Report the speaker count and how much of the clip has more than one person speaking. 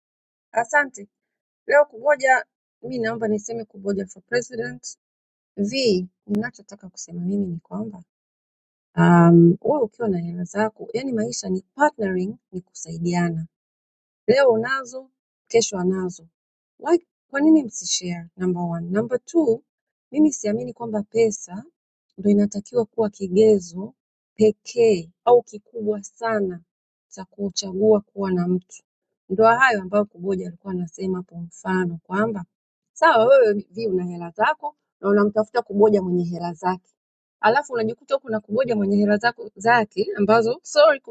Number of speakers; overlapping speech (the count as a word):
one, no overlap